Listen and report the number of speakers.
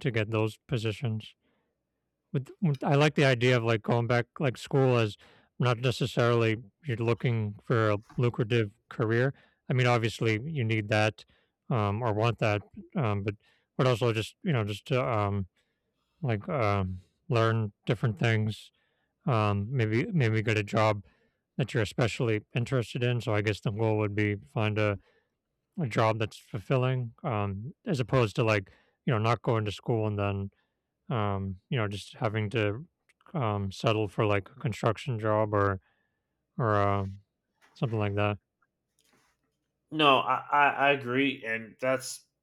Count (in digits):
2